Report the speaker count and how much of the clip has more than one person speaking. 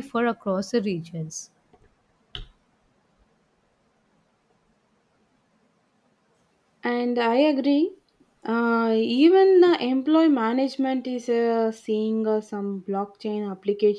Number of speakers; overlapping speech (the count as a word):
two, no overlap